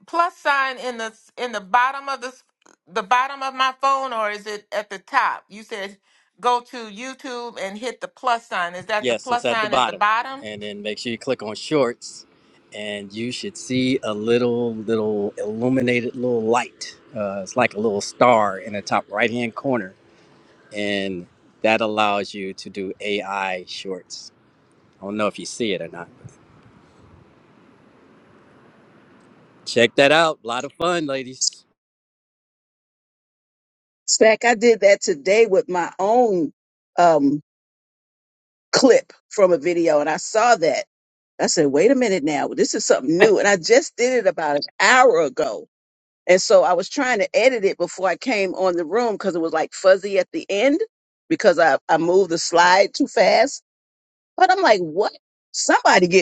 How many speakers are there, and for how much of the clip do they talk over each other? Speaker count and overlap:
3, about 2%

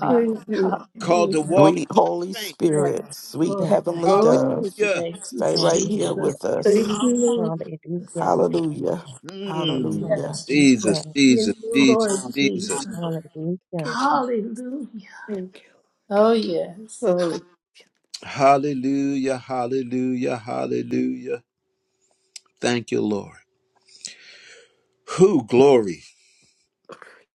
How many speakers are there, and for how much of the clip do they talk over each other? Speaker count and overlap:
5, about 34%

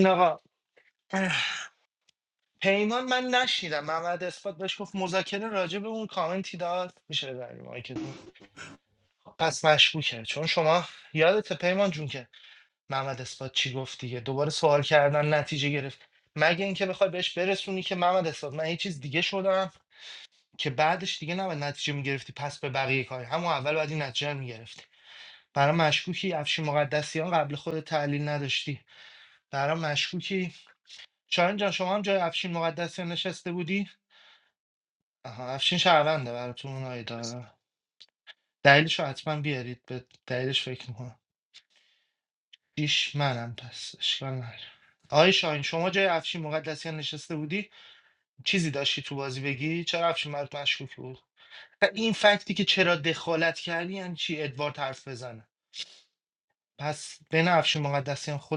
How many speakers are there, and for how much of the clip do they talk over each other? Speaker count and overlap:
1, no overlap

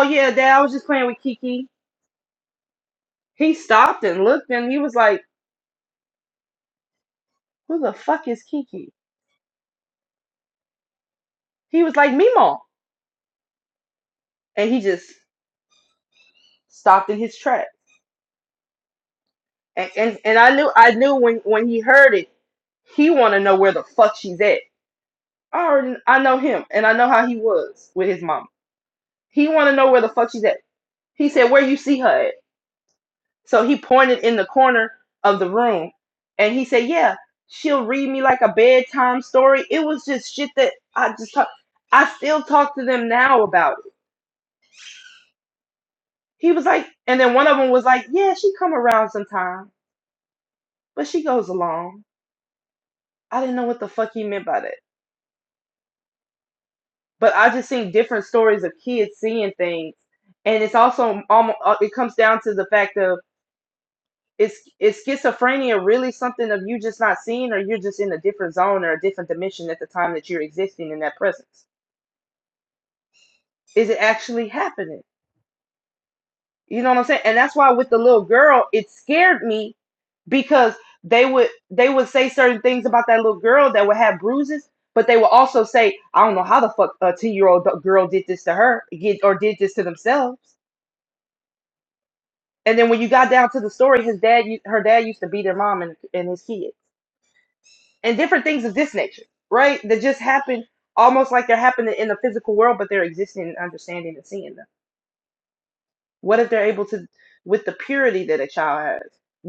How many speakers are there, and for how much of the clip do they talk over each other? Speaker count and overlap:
1, no overlap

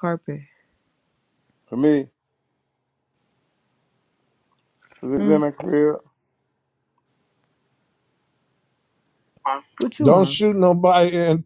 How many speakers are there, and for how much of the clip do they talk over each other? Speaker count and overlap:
3, about 5%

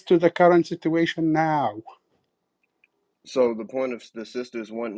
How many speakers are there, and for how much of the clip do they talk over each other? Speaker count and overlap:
2, no overlap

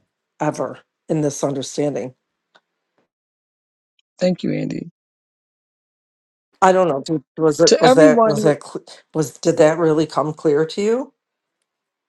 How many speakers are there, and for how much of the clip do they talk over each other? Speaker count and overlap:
2, about 7%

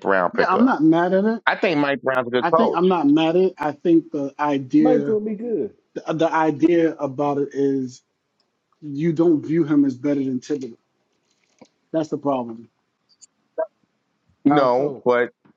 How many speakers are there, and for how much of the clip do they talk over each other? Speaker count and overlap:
3, about 11%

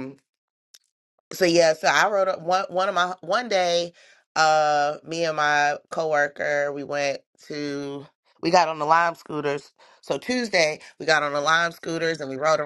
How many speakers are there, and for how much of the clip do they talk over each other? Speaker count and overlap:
1, no overlap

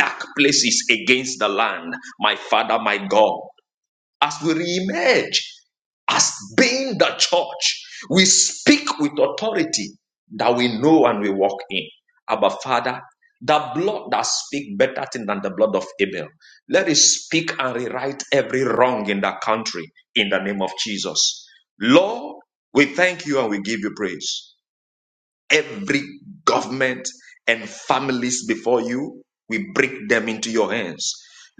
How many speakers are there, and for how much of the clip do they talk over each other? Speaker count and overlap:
1, no overlap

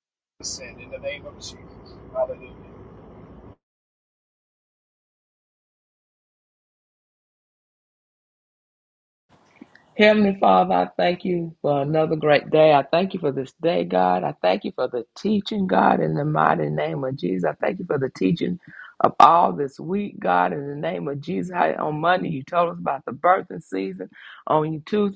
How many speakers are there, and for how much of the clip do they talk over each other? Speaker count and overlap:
2, no overlap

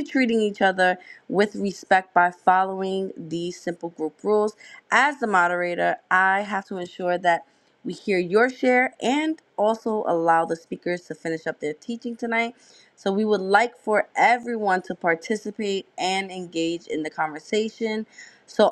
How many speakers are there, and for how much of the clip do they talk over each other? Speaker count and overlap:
1, no overlap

